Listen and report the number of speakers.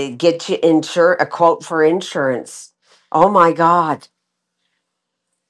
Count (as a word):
one